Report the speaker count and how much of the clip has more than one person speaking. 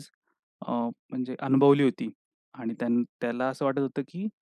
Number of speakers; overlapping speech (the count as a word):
one, no overlap